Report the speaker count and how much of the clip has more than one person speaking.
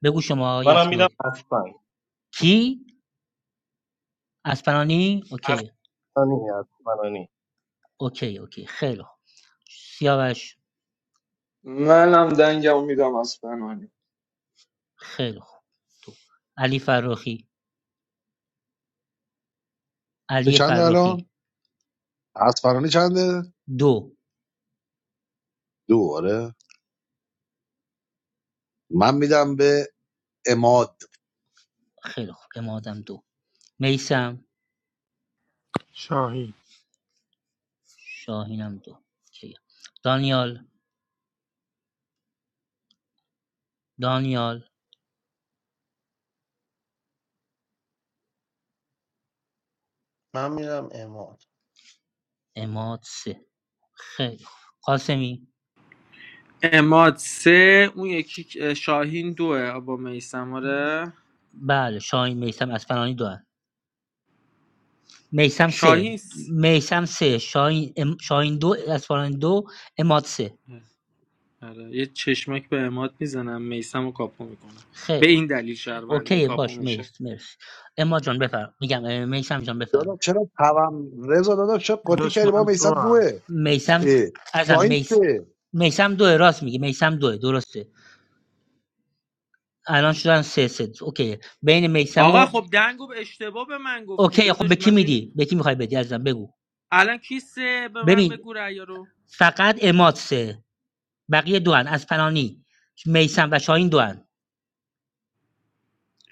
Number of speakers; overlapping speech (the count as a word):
seven, about 6%